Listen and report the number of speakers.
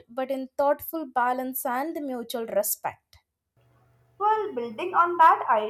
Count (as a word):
two